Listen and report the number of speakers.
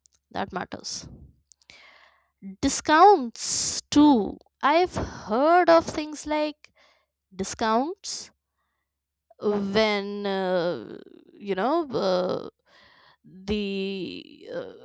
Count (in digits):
1